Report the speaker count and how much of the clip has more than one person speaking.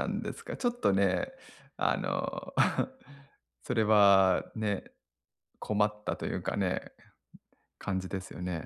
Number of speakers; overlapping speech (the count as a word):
one, no overlap